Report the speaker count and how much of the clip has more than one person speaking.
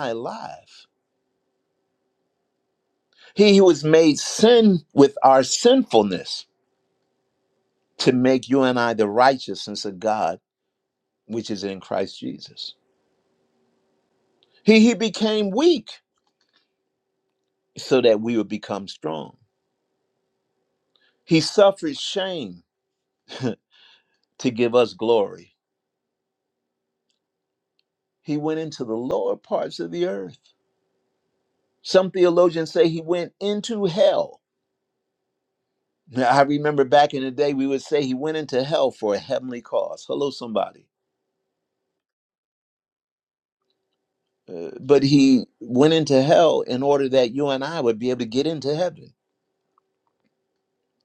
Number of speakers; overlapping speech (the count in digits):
1, no overlap